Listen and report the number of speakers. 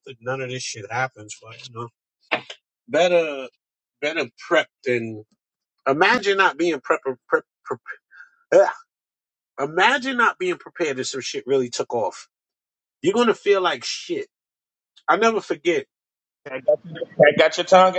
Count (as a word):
two